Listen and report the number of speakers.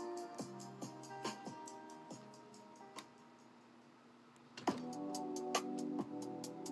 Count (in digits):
0